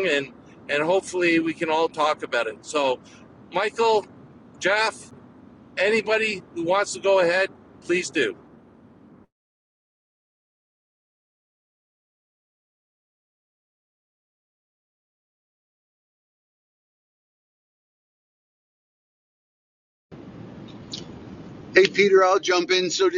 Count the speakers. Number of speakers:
two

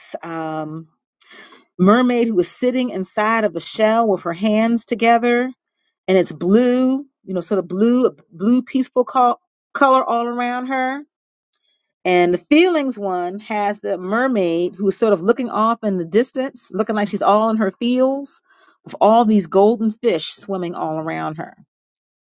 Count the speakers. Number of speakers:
one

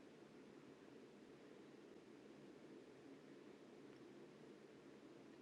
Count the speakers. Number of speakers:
zero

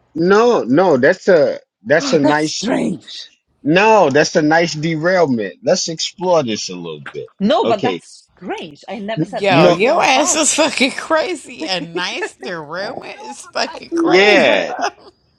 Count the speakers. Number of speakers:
three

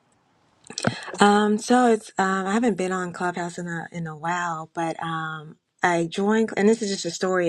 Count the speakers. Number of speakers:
one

